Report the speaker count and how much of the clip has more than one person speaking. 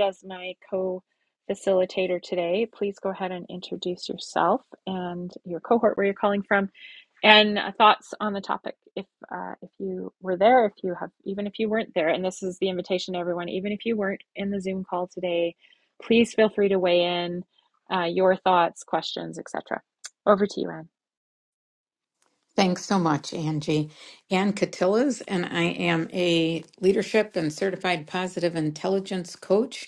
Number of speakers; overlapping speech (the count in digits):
2, no overlap